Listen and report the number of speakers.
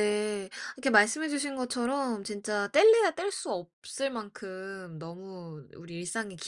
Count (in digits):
1